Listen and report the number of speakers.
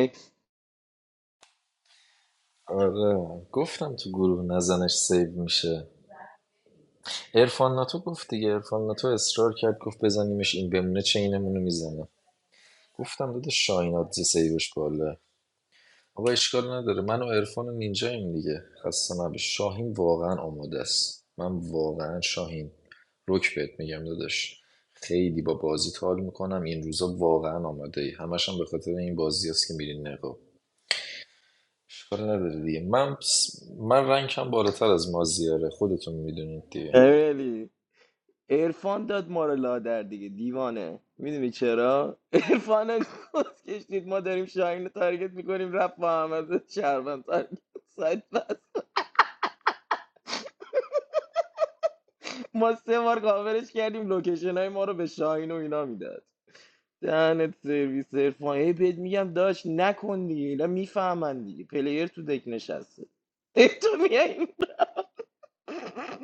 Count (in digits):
2